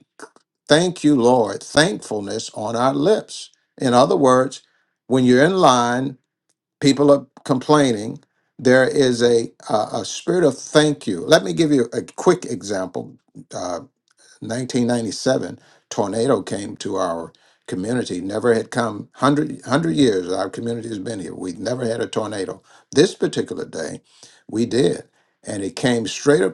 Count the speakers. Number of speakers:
one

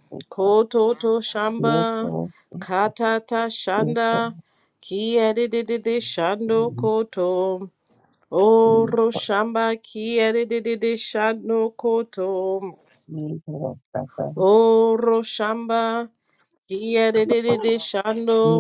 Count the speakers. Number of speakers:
two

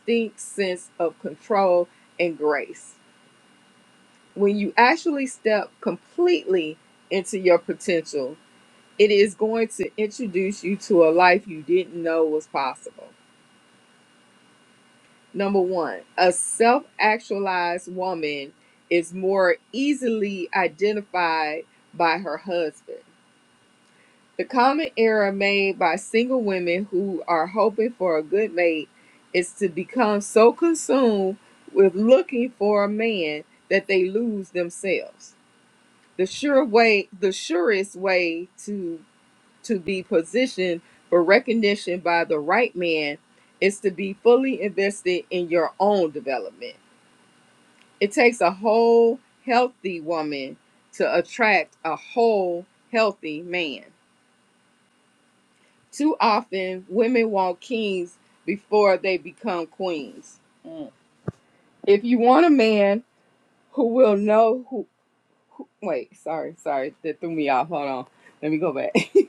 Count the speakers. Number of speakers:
one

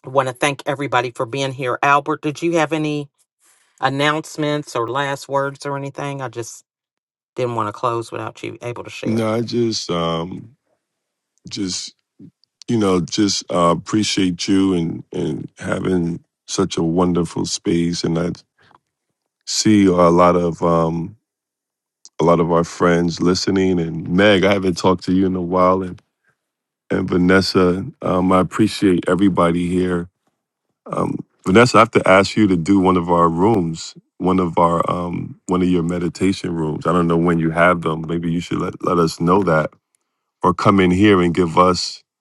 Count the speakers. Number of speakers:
two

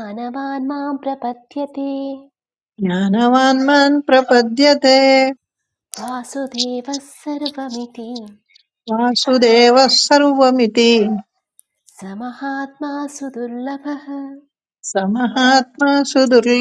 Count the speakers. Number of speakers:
two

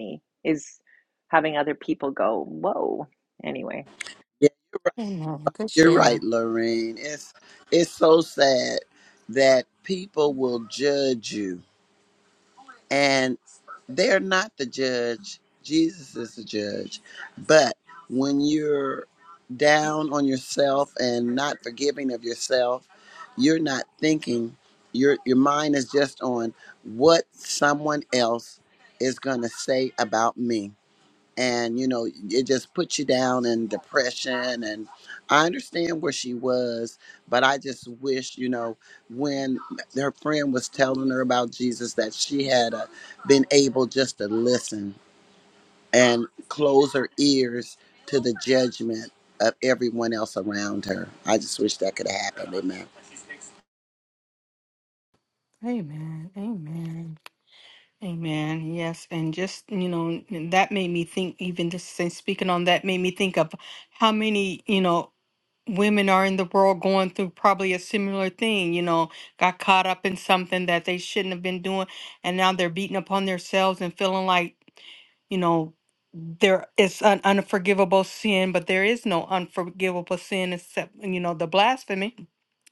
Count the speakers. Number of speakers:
three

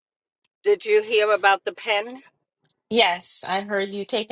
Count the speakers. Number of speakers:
two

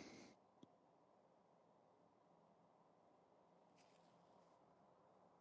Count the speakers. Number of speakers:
zero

